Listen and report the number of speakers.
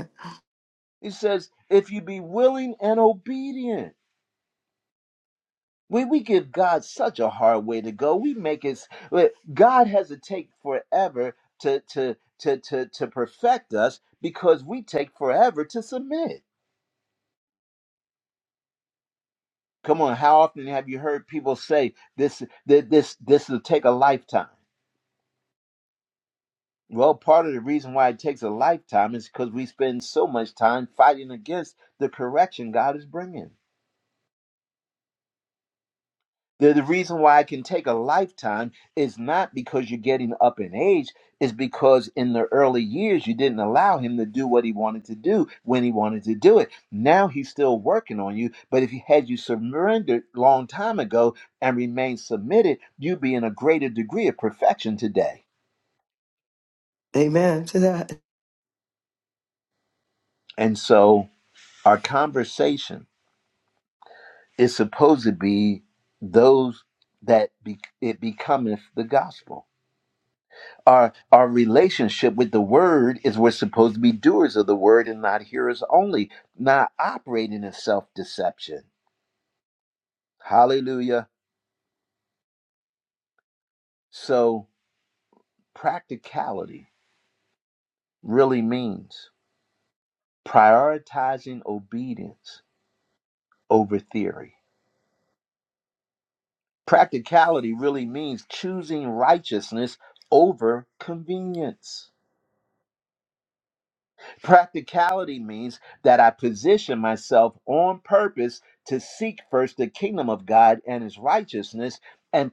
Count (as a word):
two